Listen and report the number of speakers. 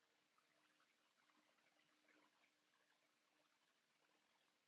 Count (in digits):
0